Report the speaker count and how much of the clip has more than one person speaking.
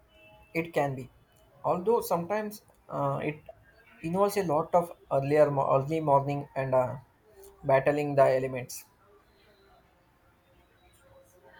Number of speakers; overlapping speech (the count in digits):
1, no overlap